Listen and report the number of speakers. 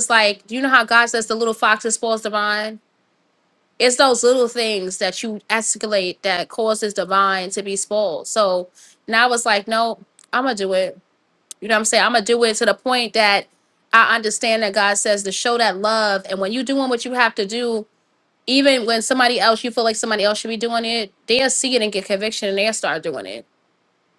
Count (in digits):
1